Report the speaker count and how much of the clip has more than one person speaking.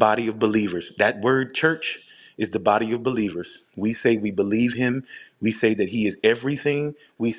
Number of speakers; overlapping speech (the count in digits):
1, no overlap